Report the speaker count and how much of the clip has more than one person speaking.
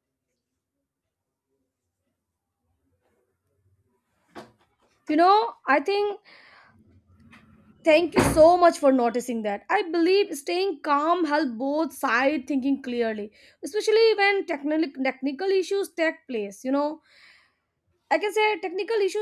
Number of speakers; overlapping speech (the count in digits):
1, no overlap